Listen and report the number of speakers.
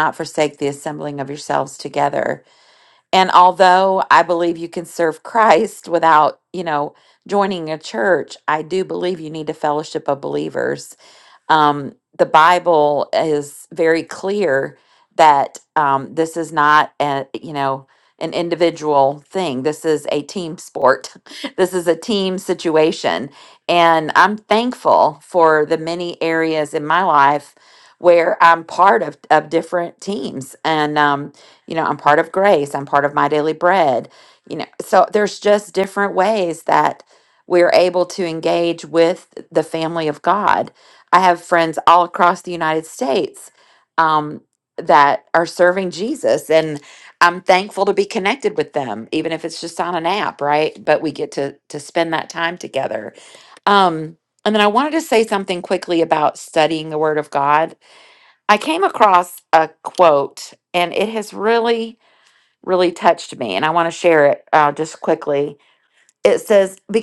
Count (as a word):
one